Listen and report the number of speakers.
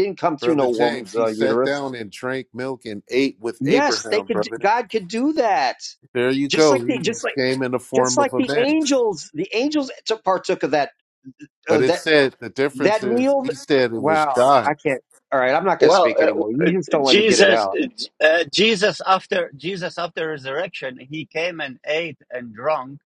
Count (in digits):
3